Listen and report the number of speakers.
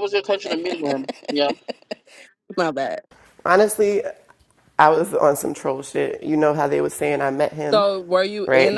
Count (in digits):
3